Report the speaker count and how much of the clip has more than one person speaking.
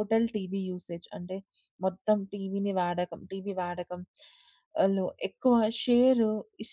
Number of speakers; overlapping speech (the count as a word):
one, no overlap